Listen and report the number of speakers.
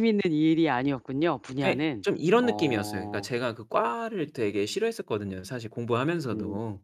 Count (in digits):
2